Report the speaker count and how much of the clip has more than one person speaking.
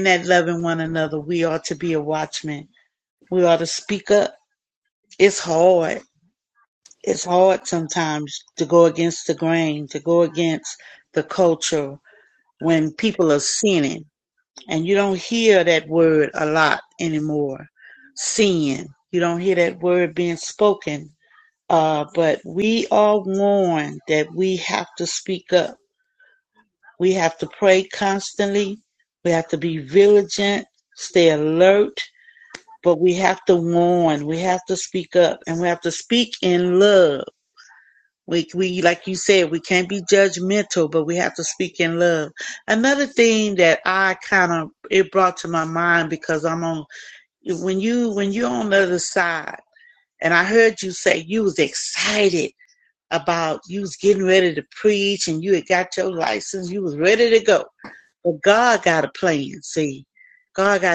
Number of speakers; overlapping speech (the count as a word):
one, no overlap